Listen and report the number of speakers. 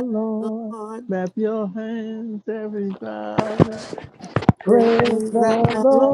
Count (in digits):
3